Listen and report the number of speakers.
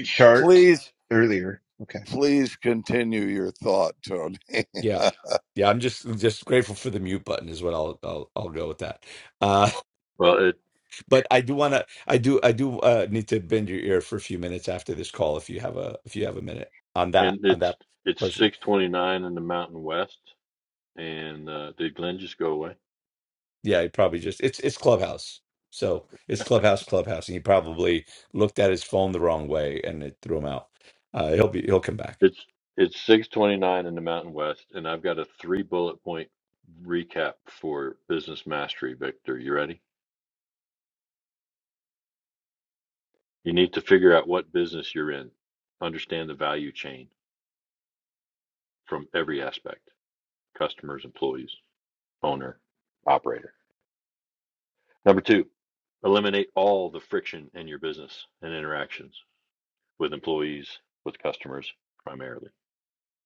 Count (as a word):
four